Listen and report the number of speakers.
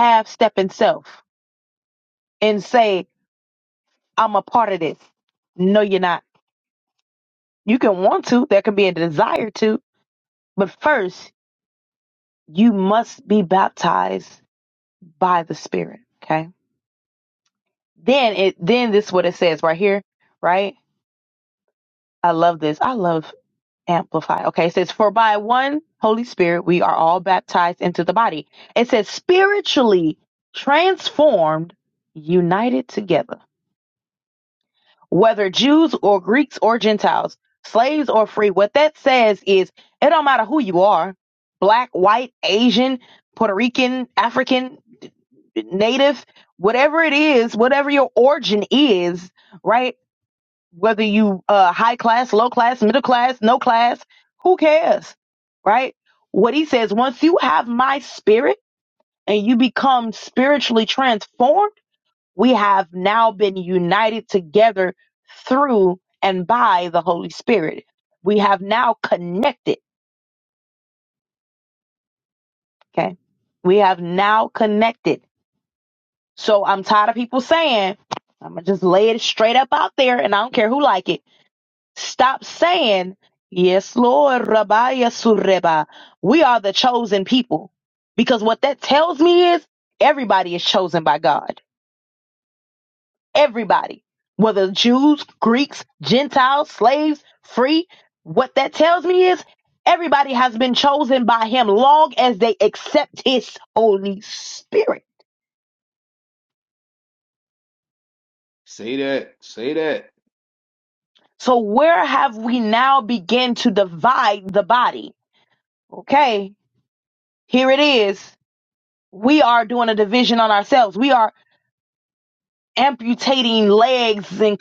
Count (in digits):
2